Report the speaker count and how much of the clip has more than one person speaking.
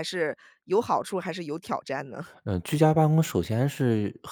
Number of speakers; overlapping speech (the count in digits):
2, no overlap